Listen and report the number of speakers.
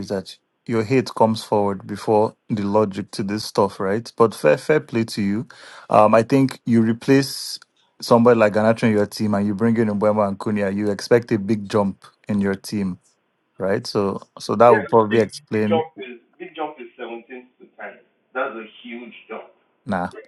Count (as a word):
two